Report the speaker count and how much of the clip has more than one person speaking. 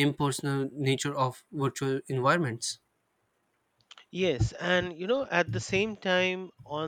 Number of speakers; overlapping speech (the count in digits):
2, no overlap